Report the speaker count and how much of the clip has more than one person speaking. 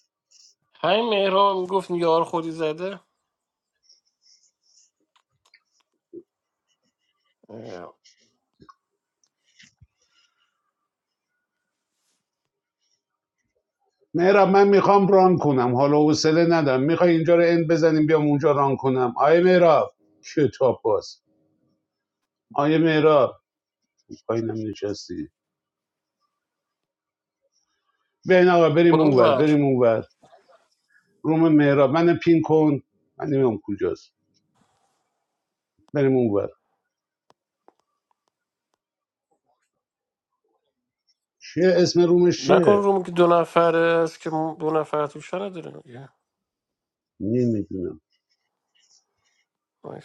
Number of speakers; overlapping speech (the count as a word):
two, about 2%